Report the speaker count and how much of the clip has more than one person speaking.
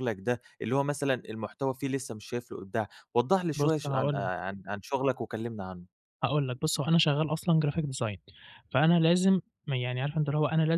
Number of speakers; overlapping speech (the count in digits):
2, about 6%